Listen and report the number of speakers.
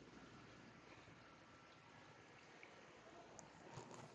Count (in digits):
0